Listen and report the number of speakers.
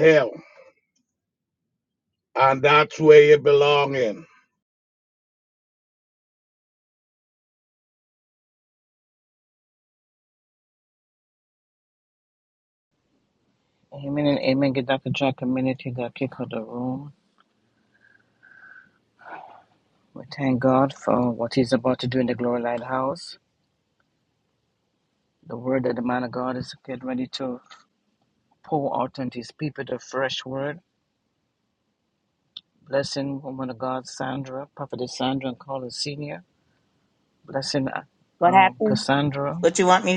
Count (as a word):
three